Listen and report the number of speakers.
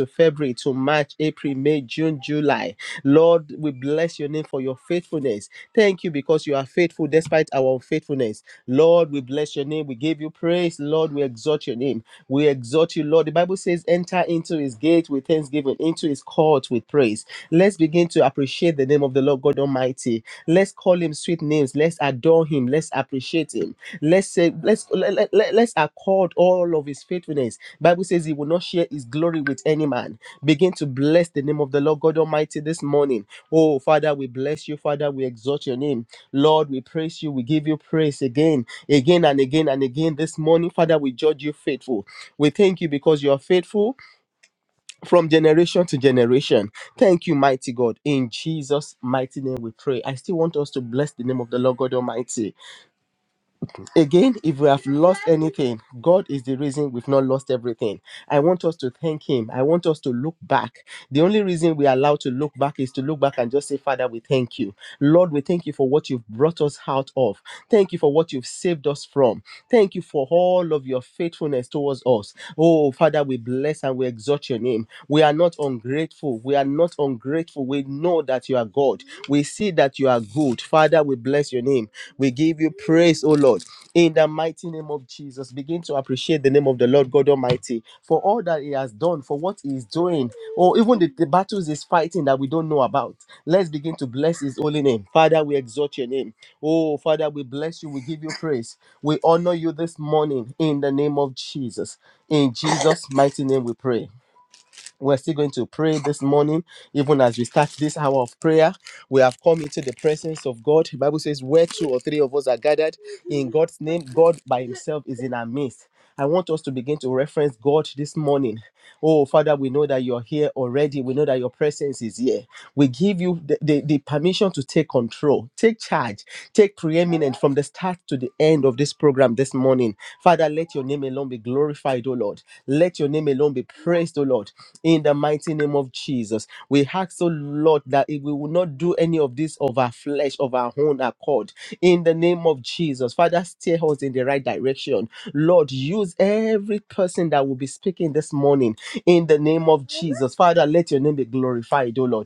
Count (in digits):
1